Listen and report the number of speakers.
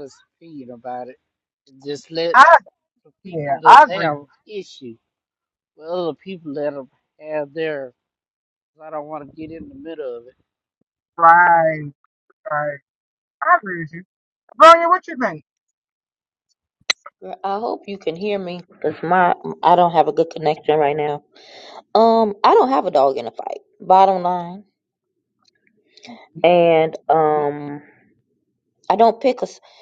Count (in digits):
3